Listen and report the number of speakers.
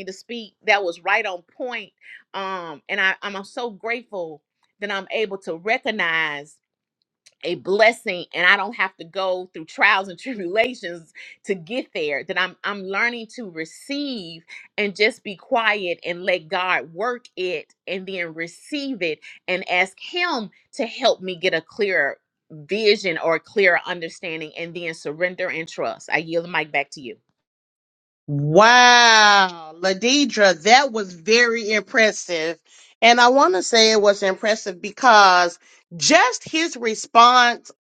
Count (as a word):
two